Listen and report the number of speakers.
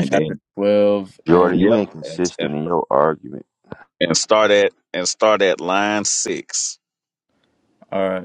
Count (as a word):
three